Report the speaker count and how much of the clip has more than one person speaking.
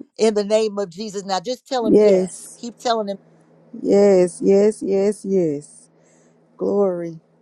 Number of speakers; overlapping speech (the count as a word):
two, about 6%